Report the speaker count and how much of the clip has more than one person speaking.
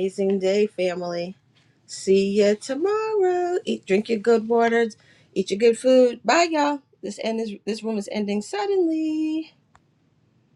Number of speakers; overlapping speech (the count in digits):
1, no overlap